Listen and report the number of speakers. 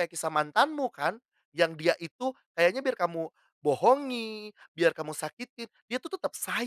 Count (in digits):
1